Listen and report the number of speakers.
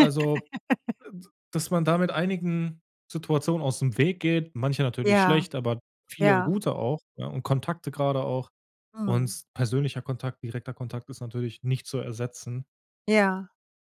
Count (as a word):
two